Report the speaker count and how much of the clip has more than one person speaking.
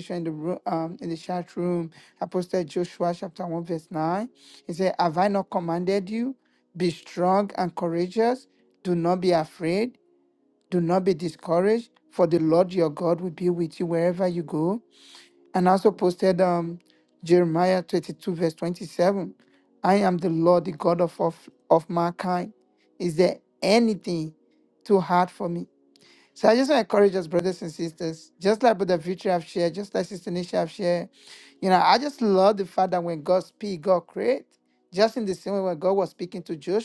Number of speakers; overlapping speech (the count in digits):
1, no overlap